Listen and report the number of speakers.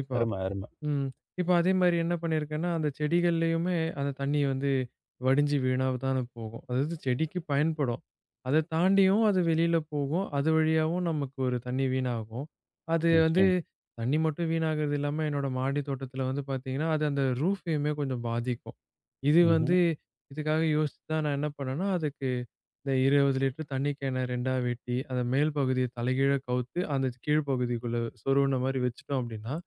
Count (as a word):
two